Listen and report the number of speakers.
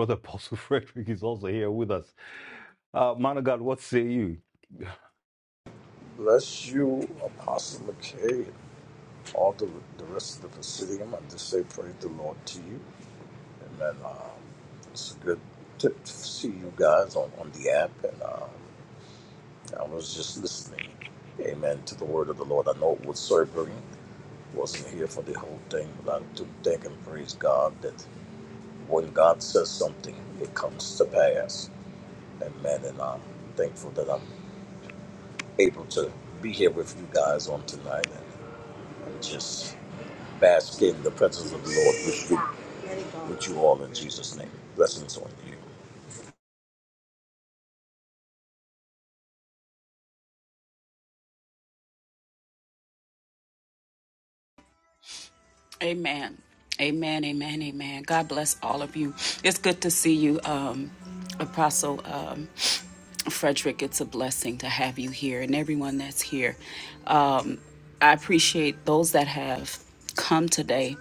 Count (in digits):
3